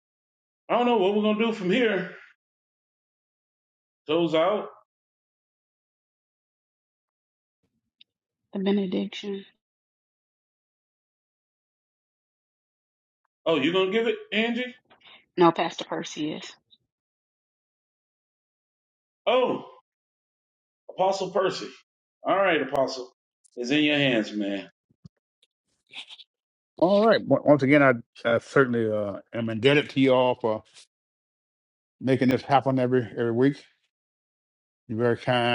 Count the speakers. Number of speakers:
three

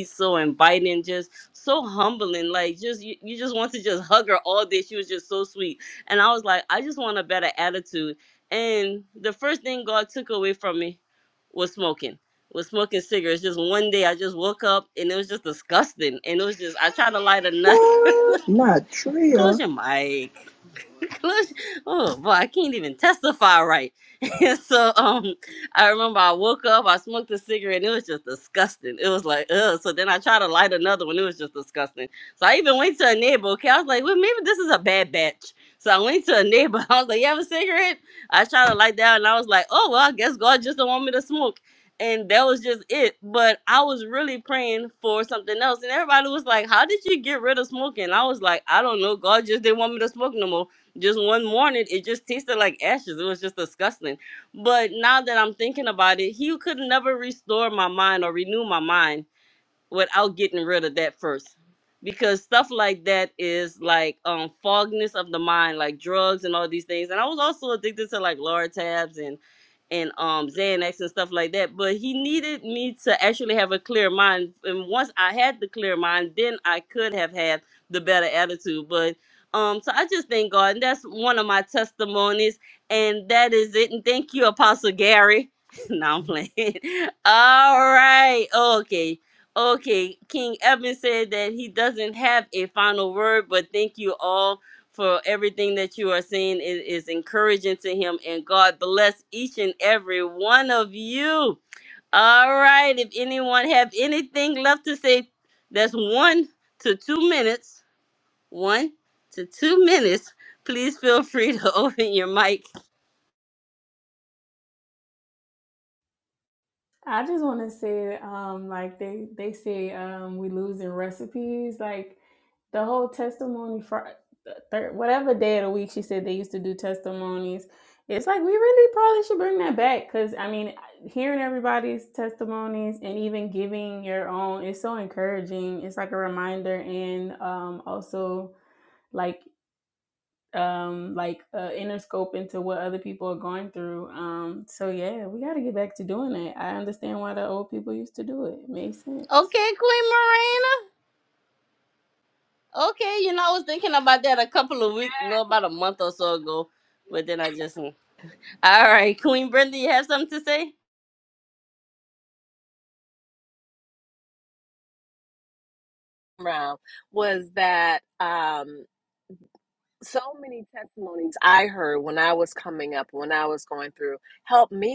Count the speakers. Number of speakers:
four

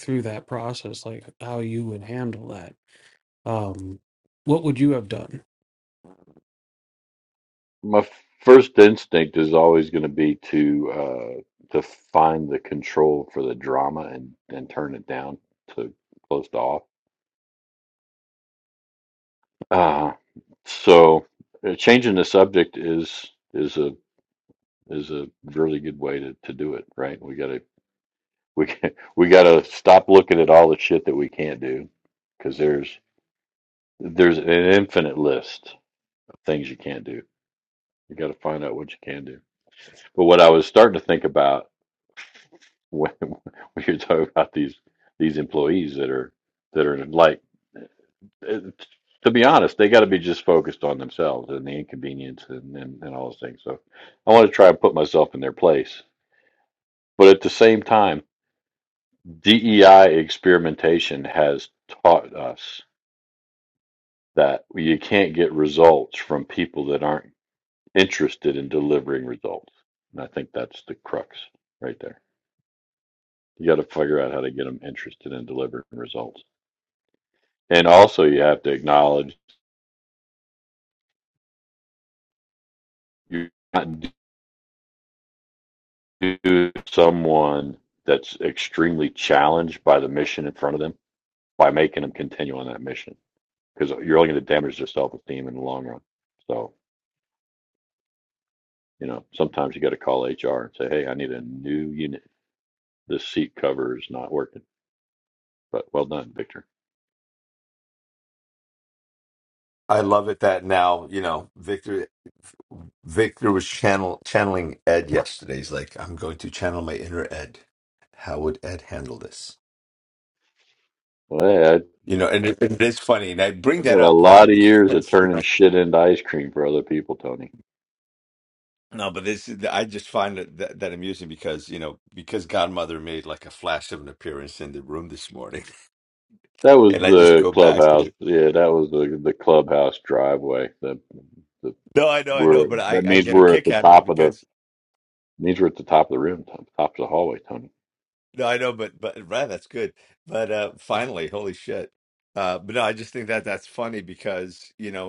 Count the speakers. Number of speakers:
three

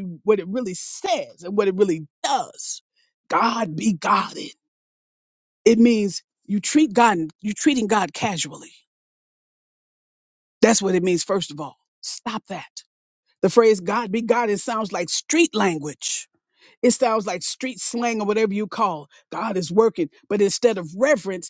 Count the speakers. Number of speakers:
one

